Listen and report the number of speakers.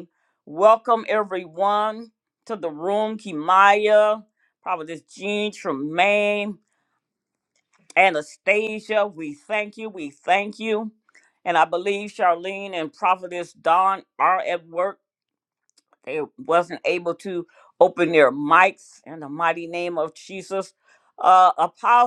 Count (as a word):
one